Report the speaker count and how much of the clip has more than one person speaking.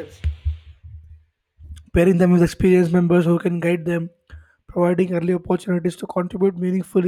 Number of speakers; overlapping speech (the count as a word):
one, no overlap